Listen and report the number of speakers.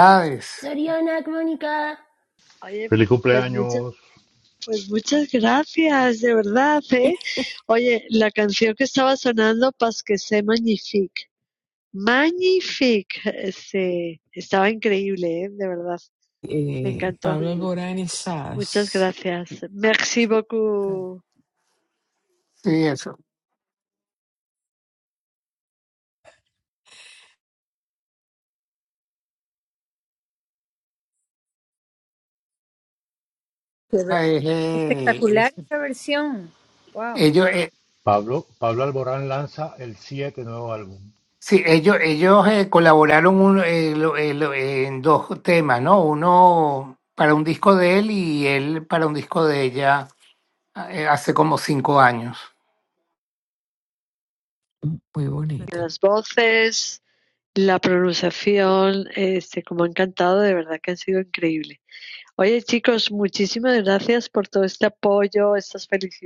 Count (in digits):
6